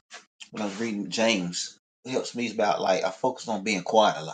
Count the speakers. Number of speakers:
one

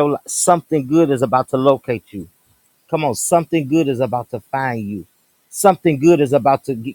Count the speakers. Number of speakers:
one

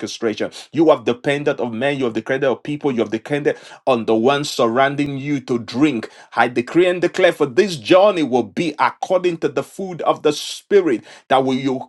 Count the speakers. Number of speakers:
one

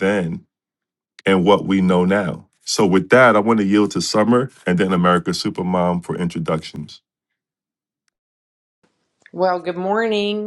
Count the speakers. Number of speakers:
two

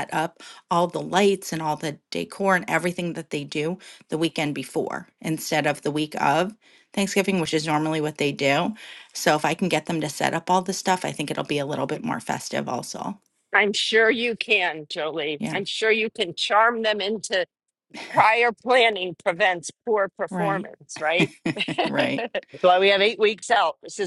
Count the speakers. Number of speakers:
three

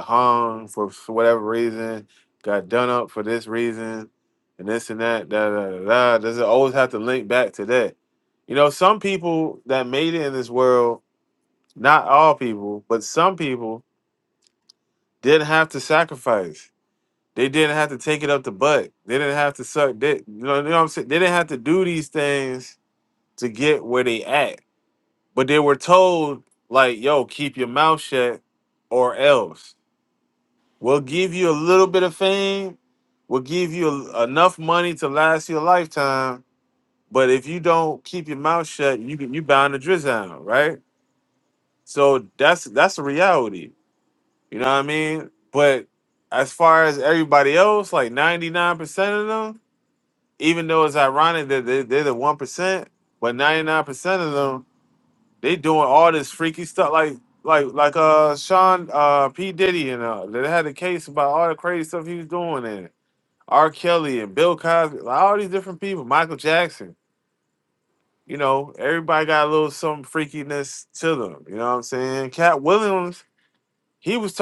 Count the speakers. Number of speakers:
one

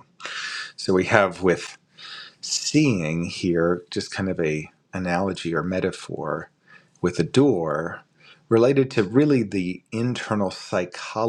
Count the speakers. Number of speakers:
one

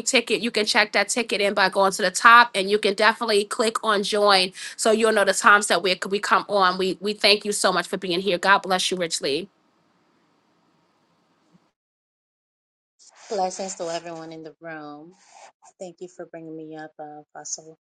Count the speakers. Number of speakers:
two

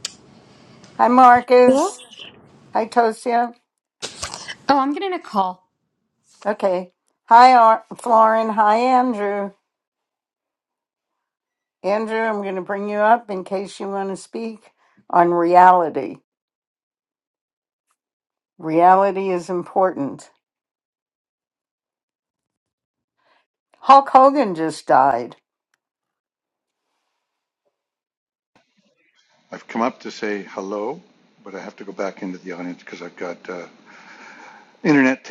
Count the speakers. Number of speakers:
three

